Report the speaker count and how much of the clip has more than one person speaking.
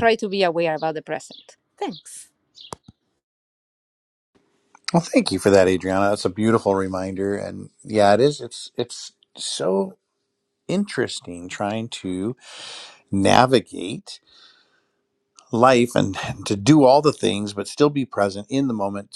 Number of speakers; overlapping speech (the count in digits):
2, no overlap